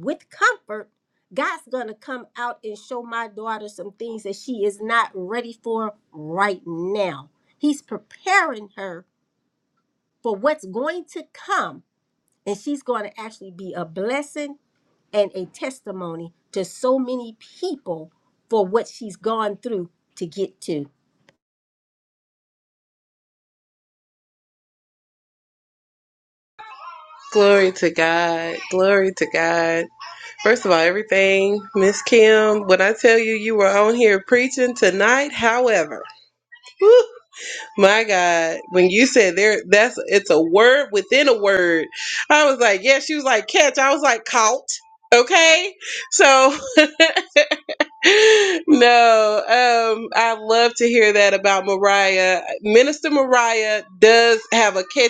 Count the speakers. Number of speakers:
two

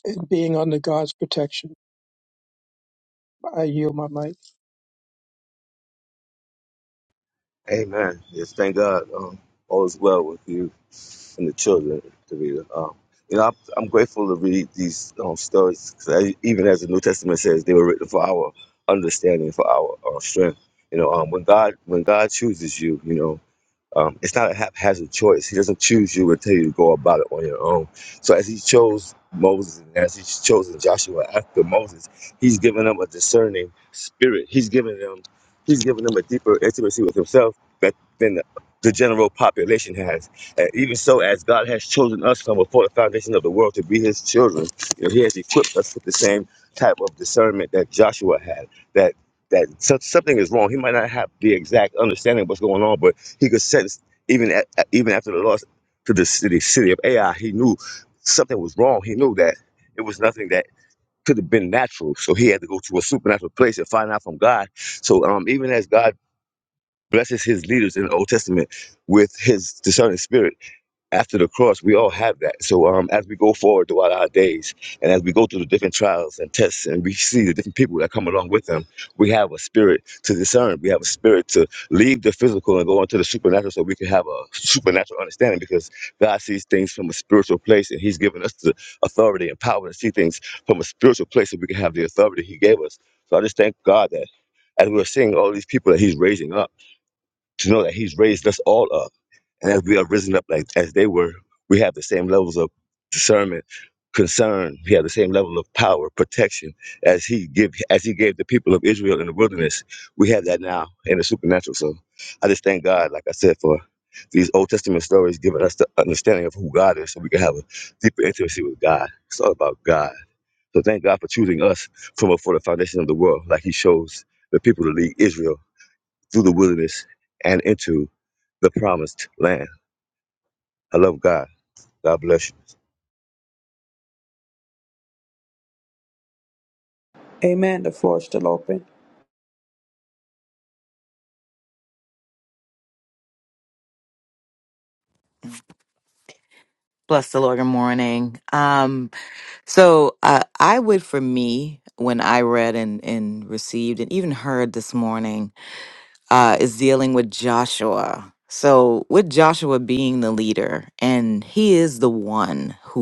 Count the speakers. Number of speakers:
four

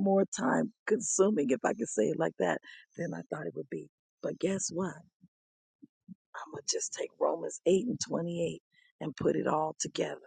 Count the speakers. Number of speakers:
one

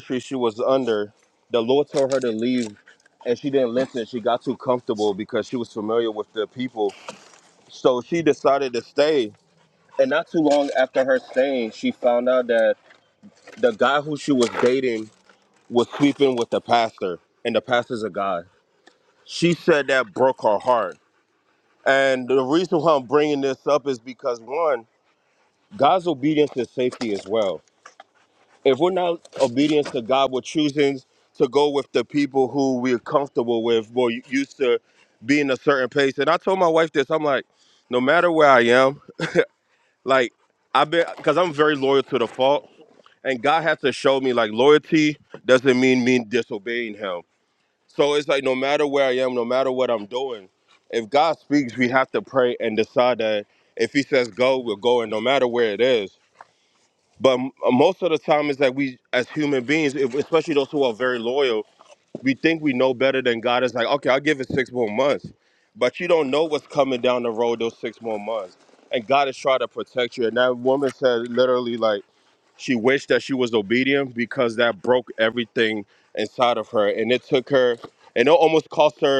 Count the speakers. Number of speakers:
one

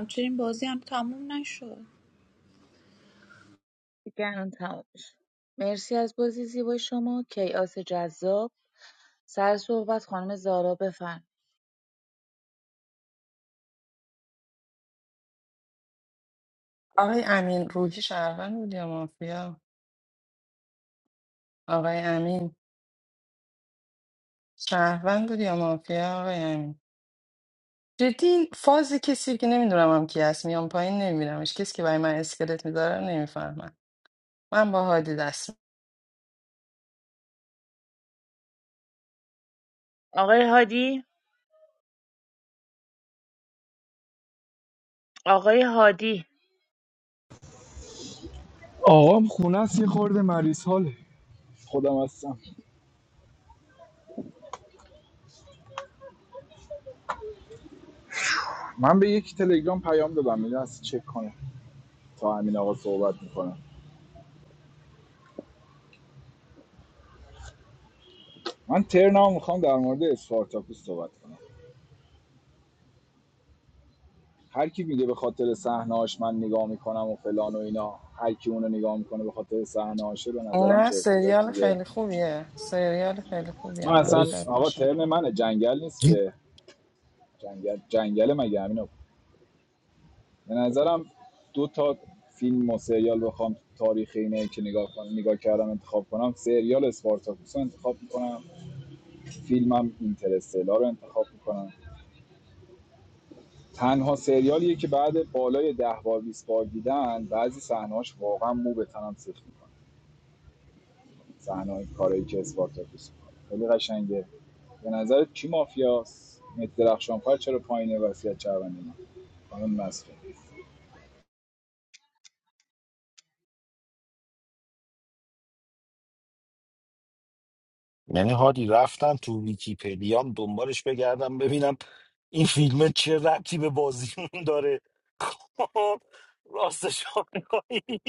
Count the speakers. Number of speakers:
five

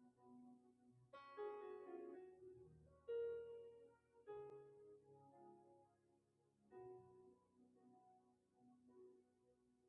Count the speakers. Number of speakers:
zero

